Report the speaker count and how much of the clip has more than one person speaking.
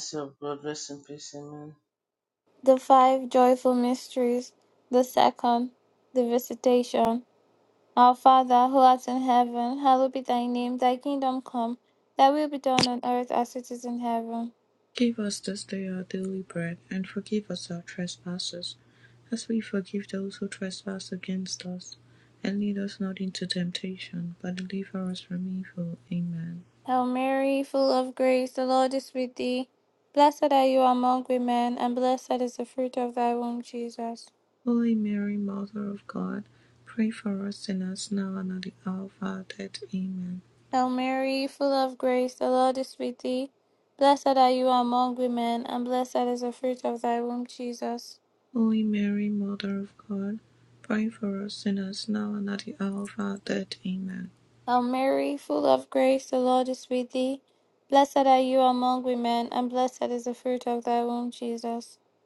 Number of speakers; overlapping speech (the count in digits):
3, no overlap